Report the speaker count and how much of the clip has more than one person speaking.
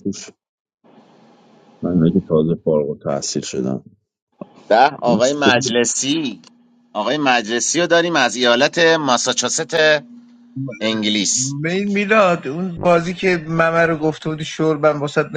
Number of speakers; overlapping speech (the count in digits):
3, about 1%